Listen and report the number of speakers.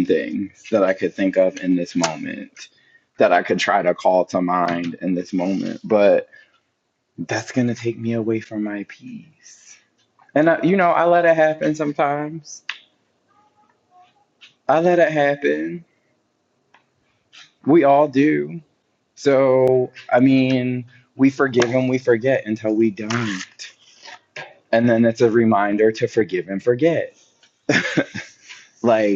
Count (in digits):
1